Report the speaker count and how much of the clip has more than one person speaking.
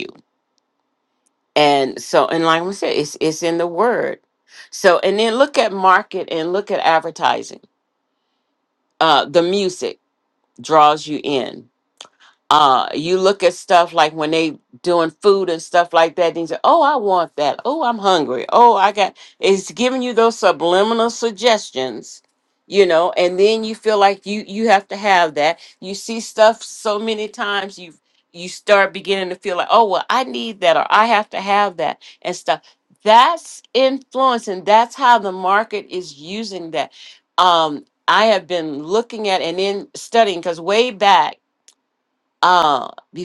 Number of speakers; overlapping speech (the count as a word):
one, no overlap